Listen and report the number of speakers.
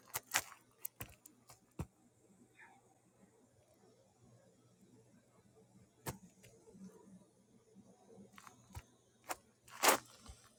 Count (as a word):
zero